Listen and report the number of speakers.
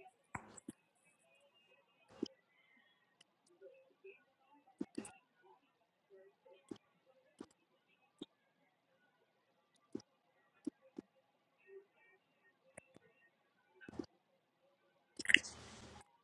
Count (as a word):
zero